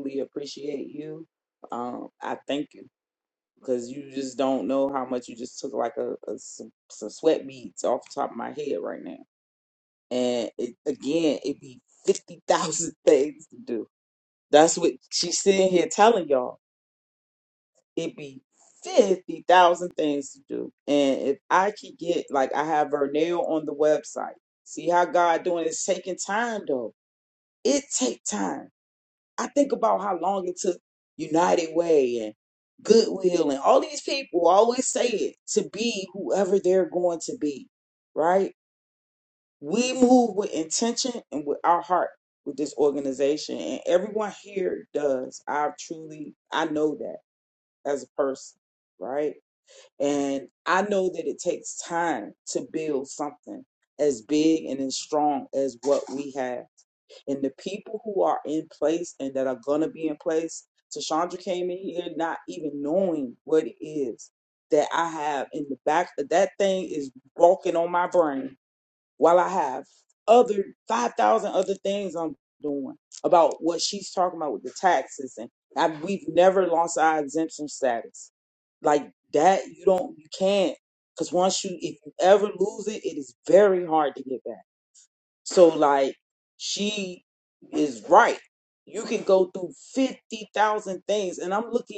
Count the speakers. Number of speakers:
1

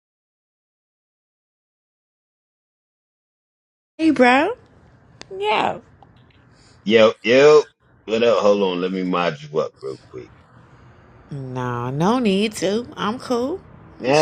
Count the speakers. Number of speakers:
2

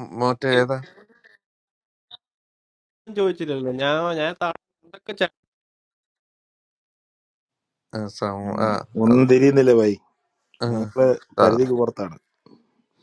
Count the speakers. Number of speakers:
3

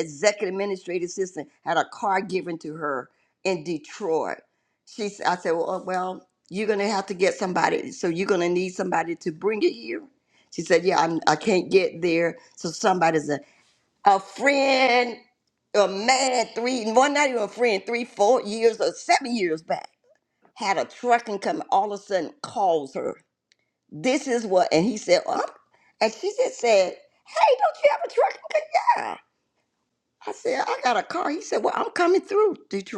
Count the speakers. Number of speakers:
1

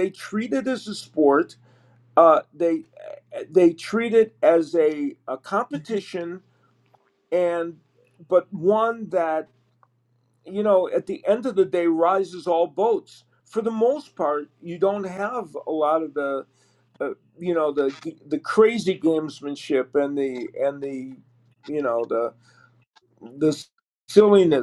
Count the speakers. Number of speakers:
1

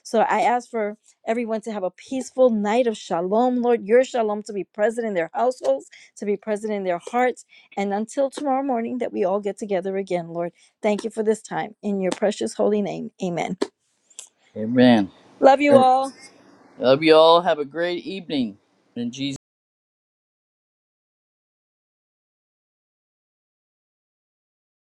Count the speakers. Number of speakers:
2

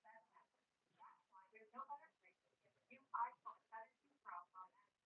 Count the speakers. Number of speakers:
0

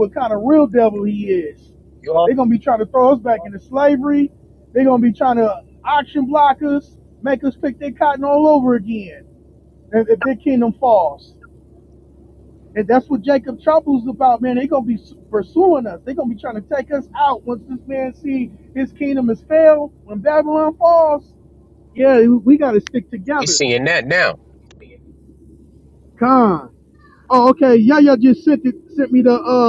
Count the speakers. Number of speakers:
2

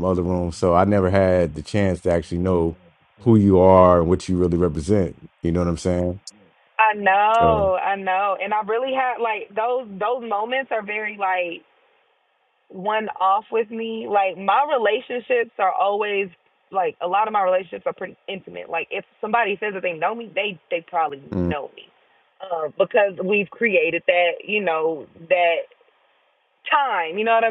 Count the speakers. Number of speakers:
2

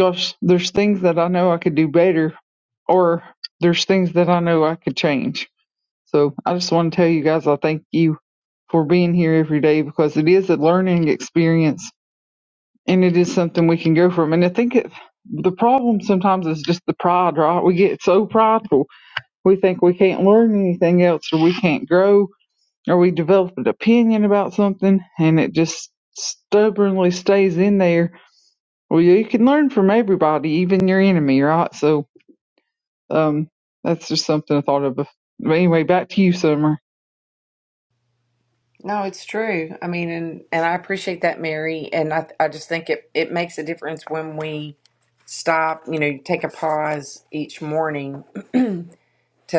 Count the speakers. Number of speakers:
2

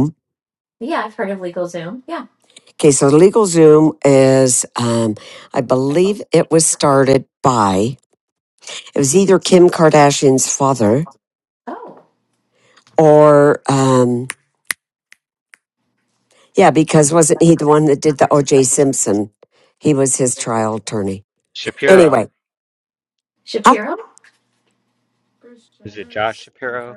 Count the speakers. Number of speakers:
3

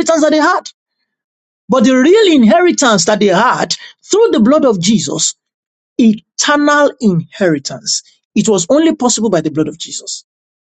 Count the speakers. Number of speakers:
1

